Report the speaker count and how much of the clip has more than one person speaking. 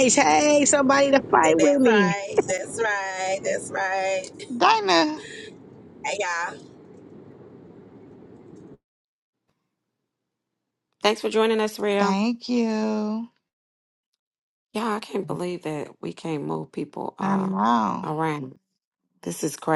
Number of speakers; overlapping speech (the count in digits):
4, about 7%